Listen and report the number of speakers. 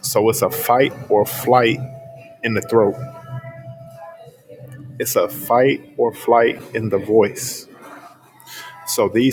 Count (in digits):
1